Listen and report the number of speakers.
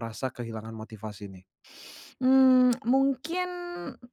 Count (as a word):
two